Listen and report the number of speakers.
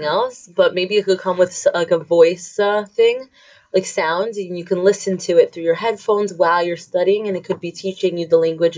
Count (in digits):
1